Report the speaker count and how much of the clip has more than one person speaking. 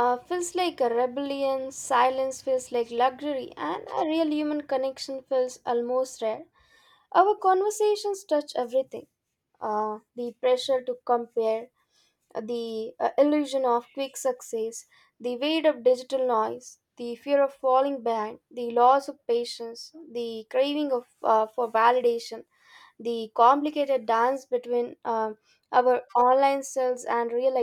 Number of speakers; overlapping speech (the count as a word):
one, no overlap